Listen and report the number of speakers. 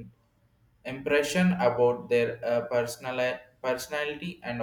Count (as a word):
one